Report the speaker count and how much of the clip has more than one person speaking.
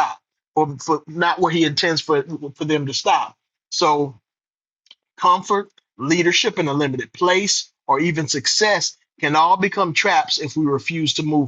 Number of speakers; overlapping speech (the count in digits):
1, no overlap